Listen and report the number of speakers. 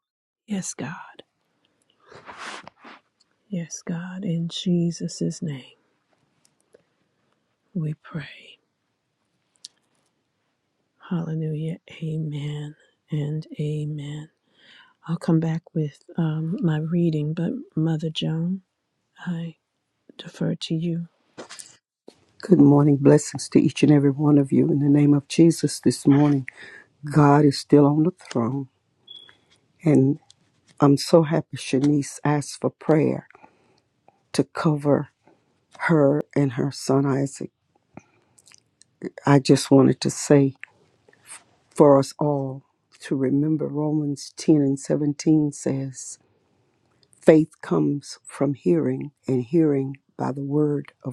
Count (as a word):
two